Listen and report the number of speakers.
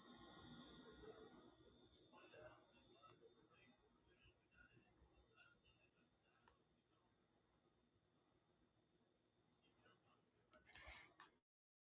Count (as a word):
zero